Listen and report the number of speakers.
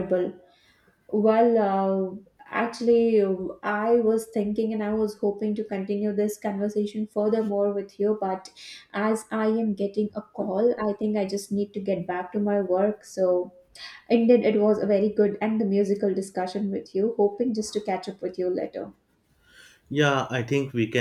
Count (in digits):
2